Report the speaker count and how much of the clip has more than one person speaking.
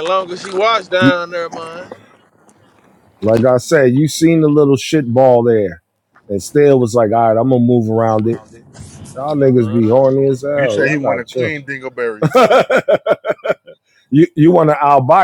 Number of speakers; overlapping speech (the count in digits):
3, about 10%